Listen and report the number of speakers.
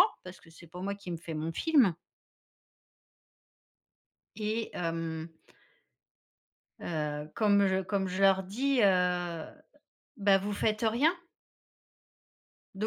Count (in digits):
1